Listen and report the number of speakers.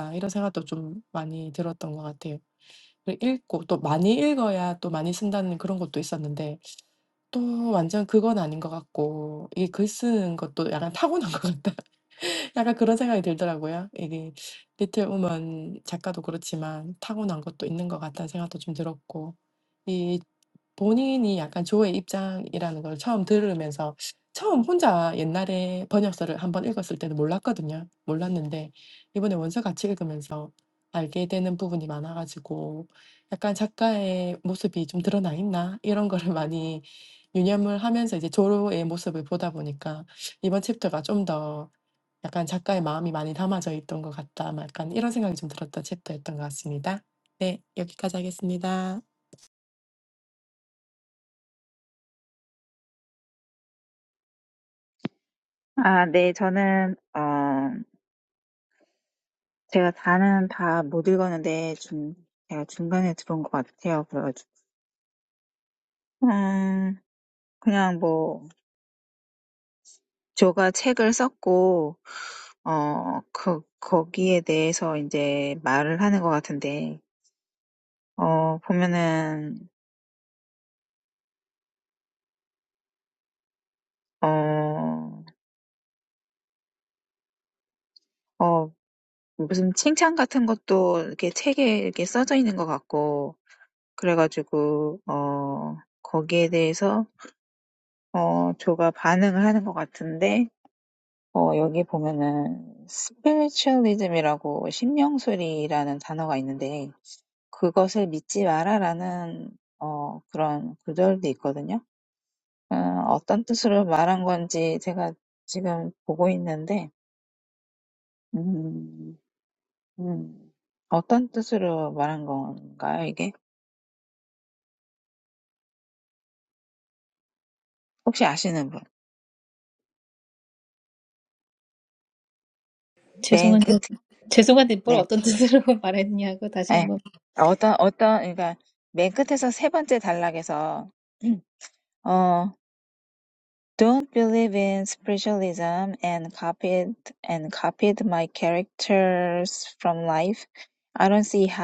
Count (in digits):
3